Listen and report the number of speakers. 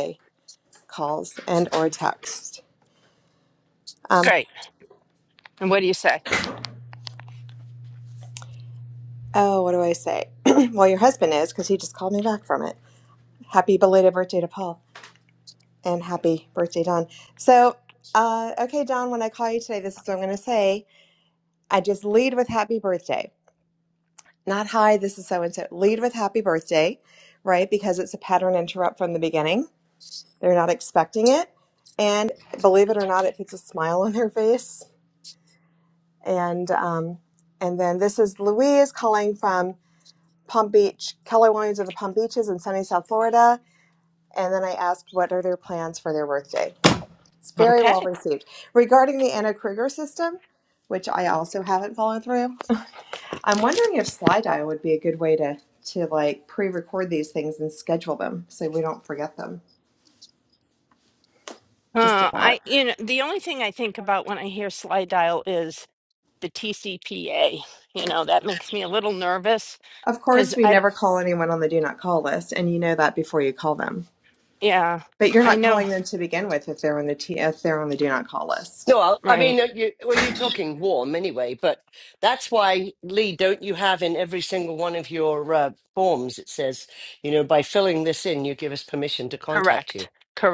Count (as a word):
three